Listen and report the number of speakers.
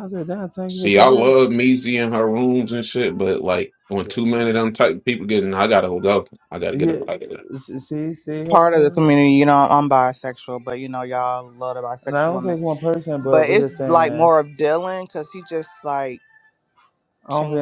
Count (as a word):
three